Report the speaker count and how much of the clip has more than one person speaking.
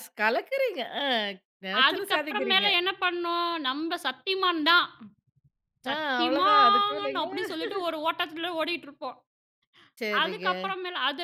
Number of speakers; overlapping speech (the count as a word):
two, about 26%